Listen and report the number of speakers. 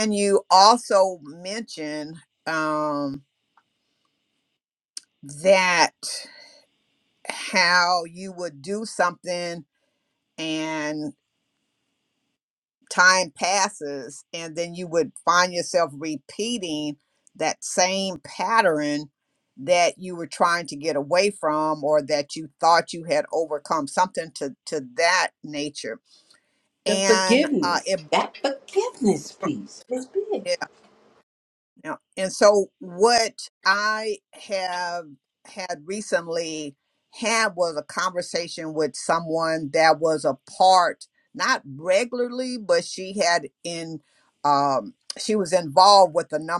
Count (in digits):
2